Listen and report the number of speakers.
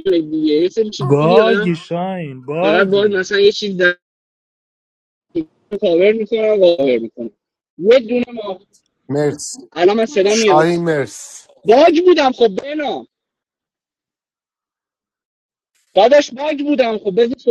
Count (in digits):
3